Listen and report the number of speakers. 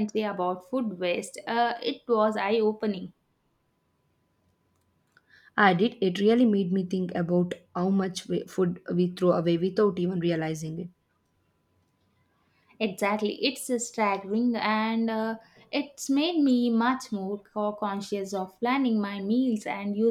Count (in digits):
2